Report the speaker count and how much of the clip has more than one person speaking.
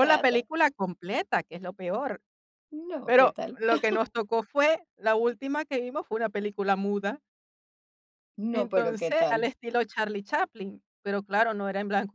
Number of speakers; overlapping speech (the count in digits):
2, about 15%